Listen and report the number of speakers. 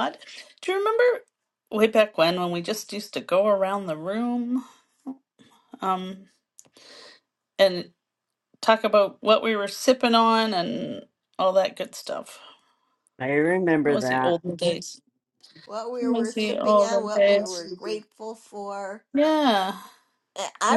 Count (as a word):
three